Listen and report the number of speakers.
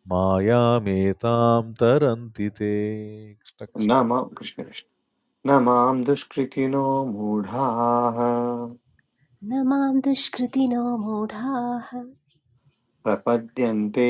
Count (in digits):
3